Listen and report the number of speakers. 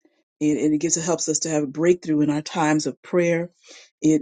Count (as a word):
one